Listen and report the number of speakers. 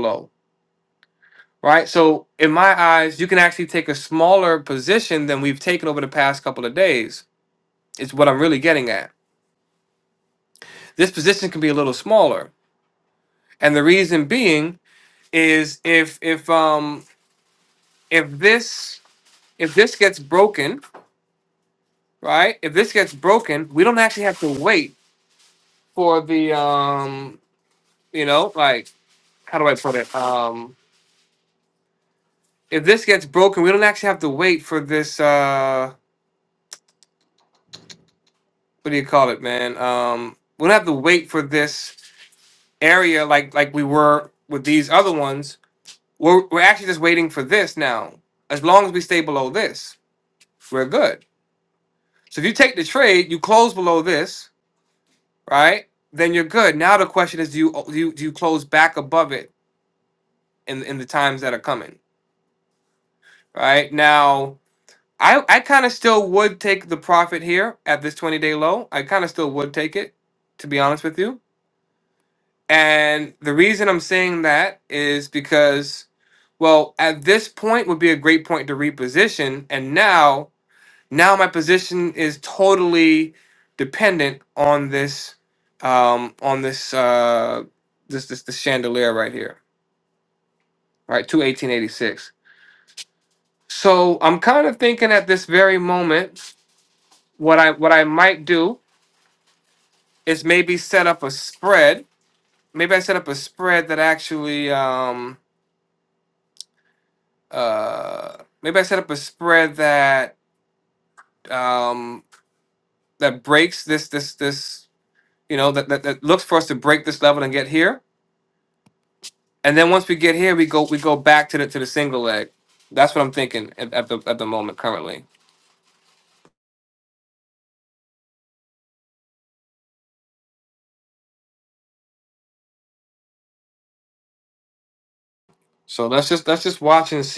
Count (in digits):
1